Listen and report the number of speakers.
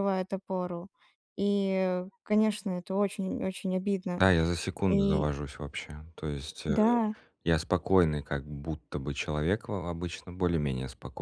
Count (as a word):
two